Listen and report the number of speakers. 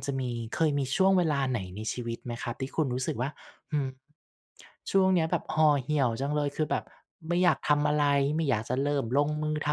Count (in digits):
1